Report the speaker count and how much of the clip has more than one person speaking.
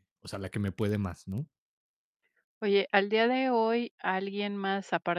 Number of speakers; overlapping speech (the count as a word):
two, no overlap